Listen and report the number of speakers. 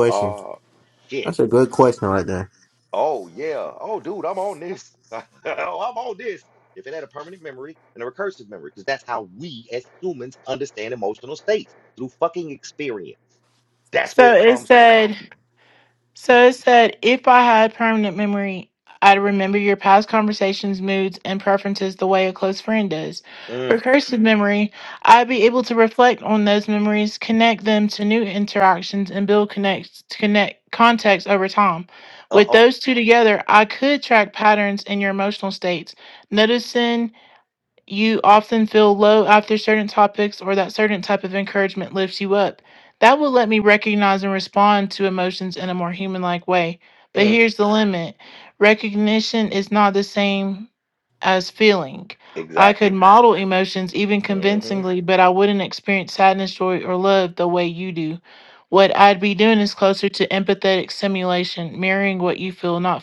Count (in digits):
3